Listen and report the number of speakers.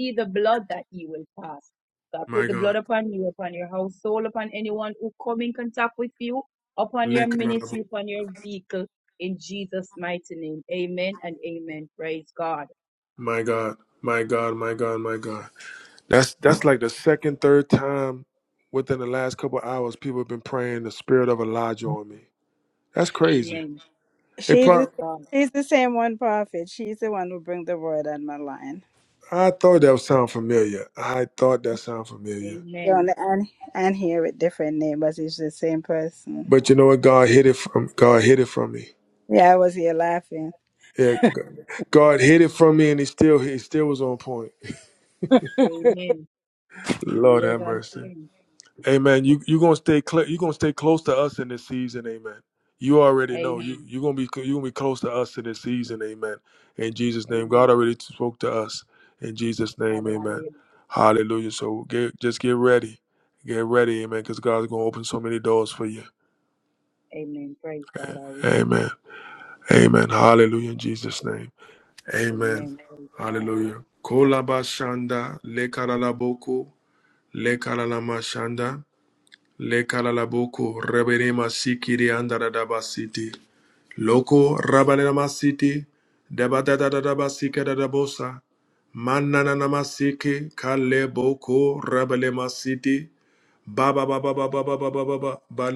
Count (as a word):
three